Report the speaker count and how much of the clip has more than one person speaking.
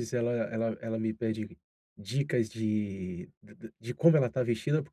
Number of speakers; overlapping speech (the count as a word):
one, no overlap